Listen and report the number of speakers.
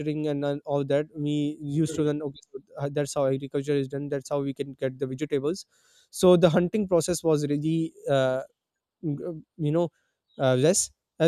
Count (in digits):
1